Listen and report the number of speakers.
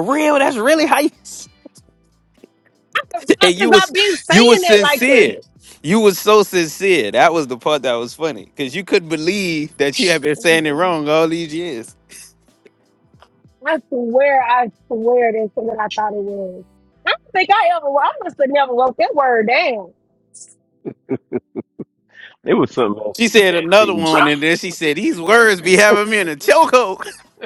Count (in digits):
3